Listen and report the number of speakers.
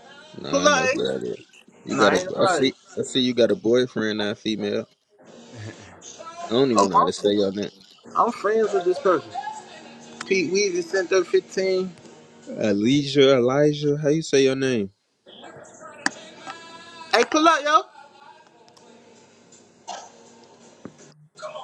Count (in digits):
2